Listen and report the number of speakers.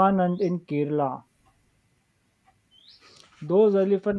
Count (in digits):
1